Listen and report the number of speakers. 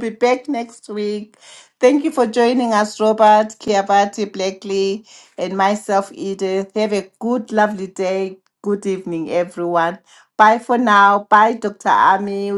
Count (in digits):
1